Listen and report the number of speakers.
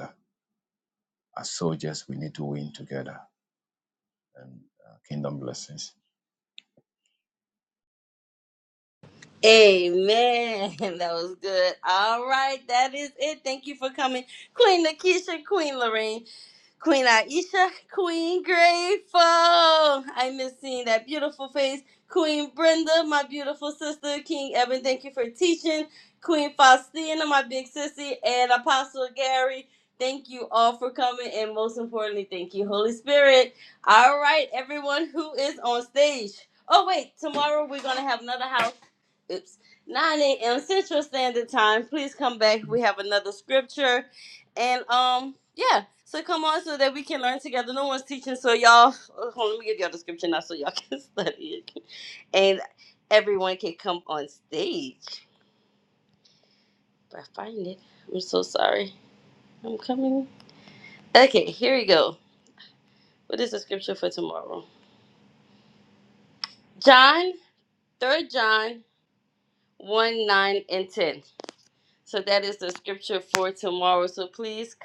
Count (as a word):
two